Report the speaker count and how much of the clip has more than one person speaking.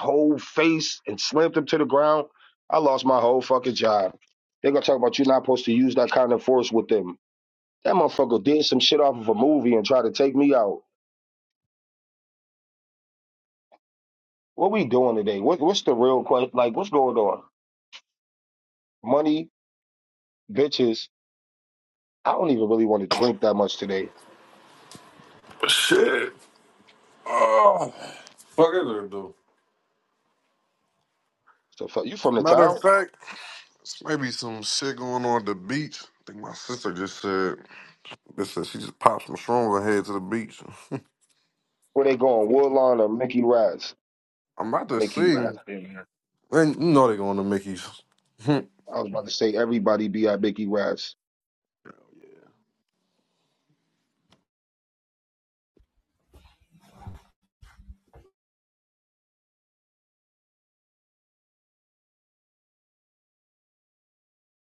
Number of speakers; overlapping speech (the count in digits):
2, about 1%